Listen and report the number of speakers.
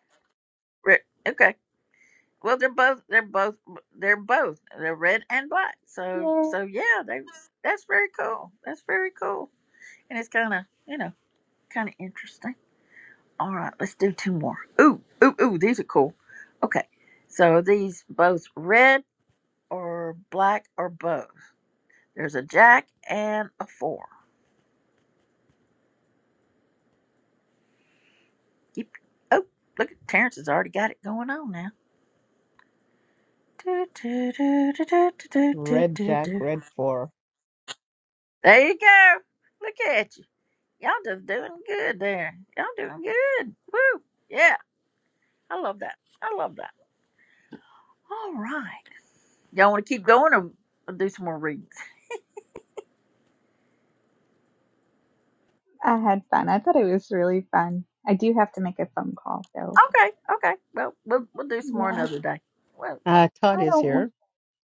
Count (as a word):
three